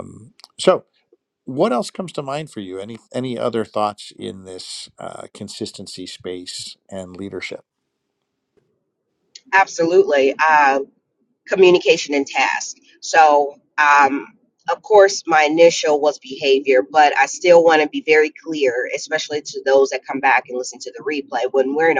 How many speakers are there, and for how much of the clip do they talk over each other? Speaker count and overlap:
2, no overlap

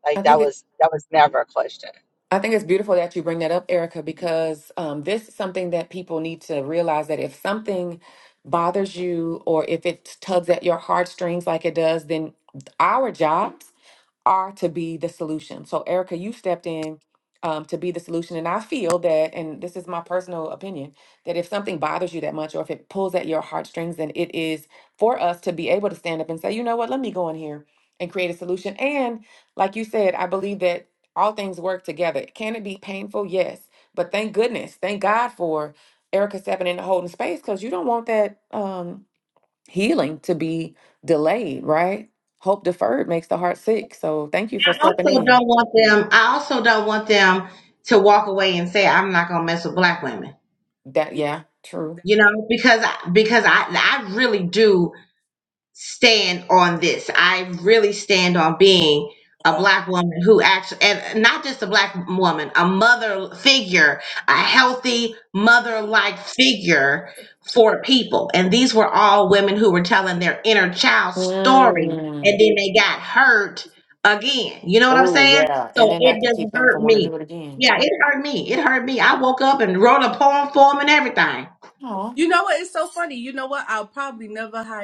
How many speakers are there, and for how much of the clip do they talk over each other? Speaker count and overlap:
4, about 5%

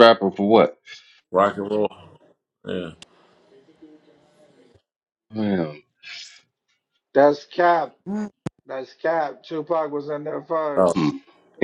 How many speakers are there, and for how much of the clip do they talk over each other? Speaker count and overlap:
3, about 1%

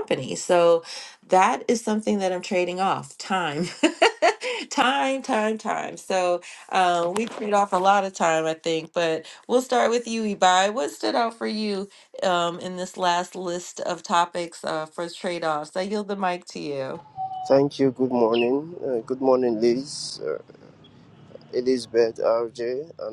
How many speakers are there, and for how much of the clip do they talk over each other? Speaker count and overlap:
2, no overlap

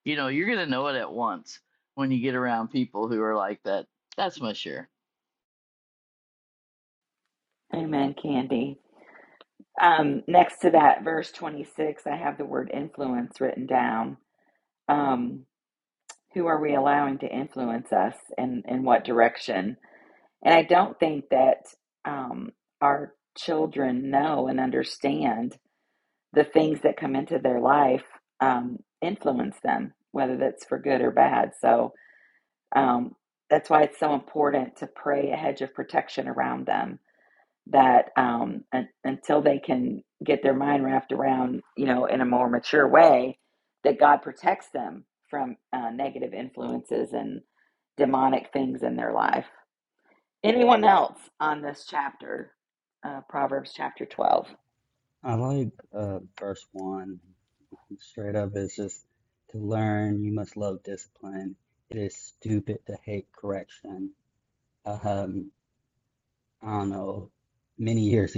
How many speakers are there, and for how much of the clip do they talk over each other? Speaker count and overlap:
3, no overlap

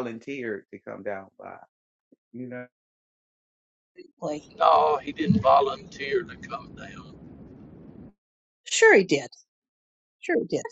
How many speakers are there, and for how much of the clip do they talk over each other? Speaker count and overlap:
3, no overlap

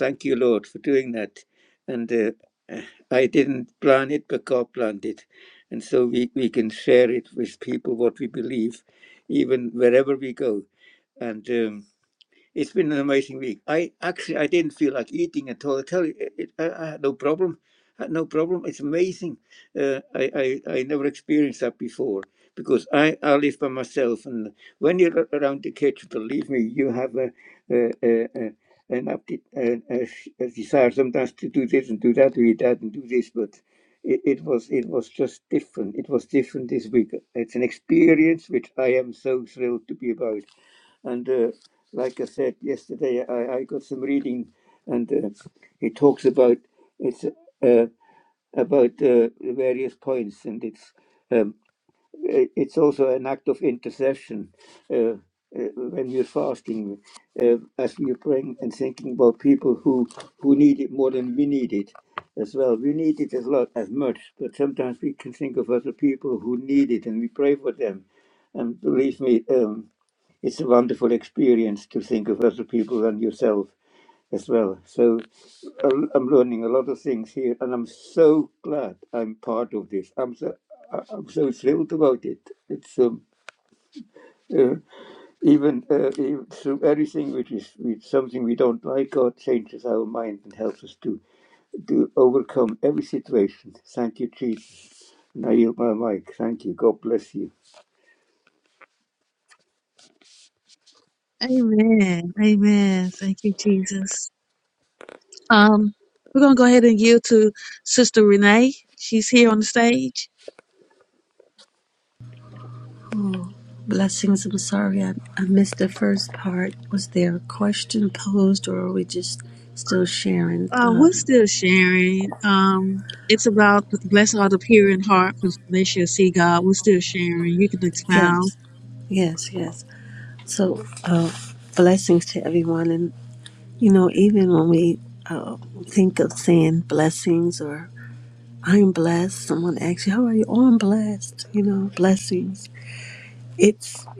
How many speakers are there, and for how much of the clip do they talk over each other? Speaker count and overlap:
3, about 1%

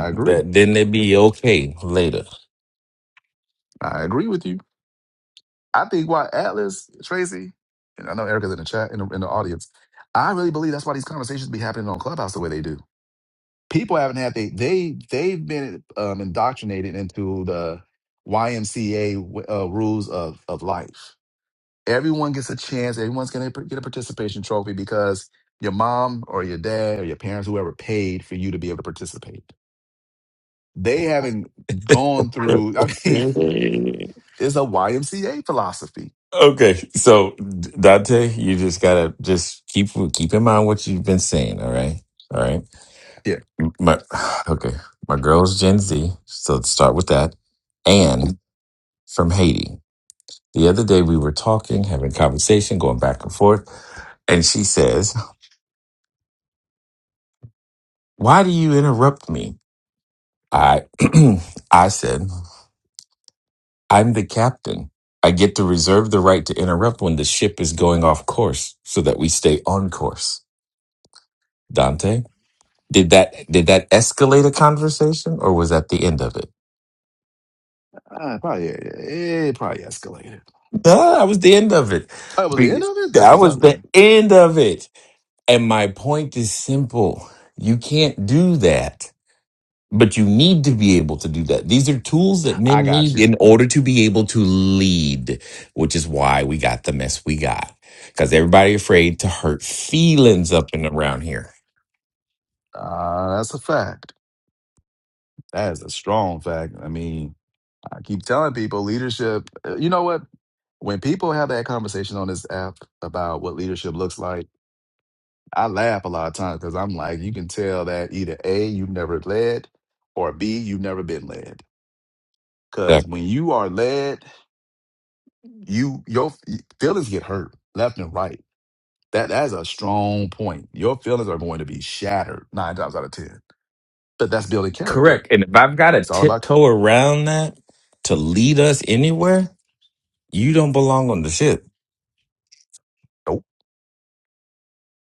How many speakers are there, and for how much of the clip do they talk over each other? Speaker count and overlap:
2, about 2%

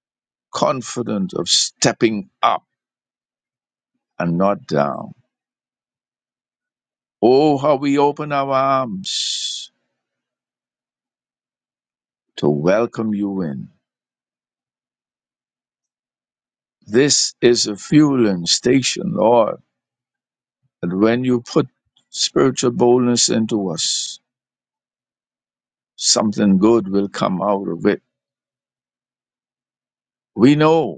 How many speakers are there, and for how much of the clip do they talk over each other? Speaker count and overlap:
1, no overlap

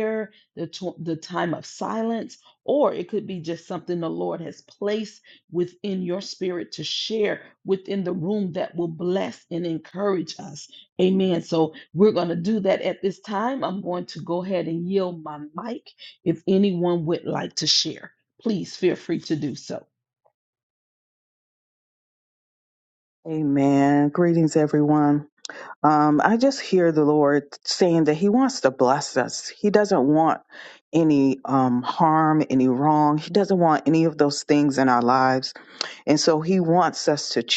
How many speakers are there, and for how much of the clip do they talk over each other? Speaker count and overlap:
2, no overlap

